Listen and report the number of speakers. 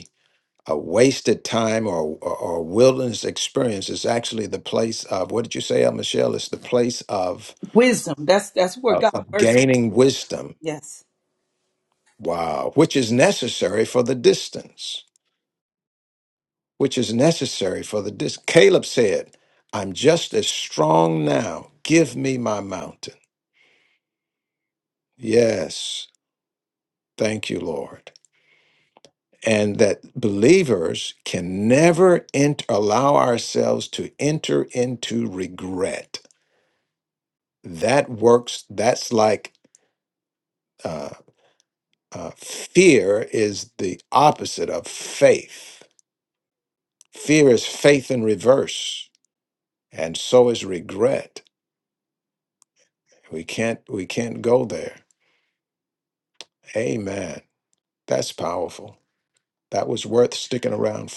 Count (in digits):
2